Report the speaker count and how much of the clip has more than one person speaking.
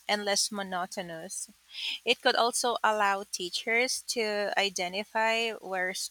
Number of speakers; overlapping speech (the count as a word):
one, no overlap